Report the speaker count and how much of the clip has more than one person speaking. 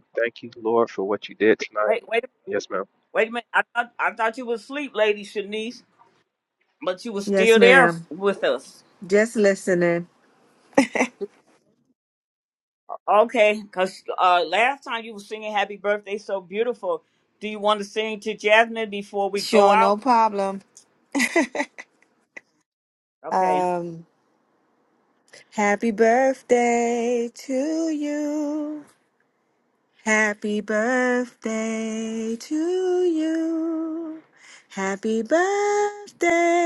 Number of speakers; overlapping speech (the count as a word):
three, about 5%